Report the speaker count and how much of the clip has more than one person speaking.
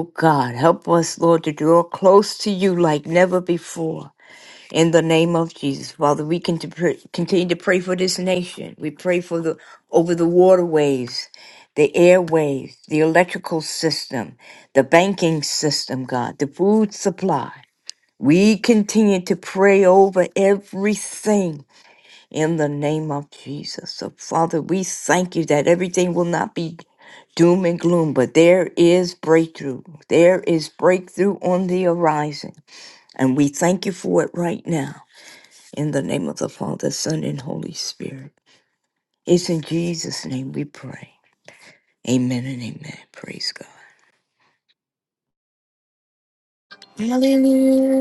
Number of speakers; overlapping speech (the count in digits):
2, no overlap